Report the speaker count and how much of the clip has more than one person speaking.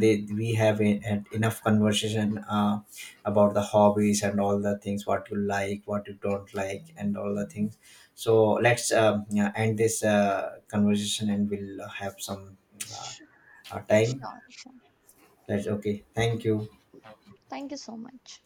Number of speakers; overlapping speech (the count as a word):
two, about 2%